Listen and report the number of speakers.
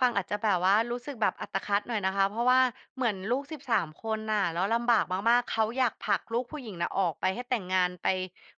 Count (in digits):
1